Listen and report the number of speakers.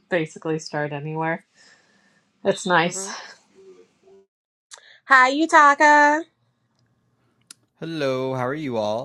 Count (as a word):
three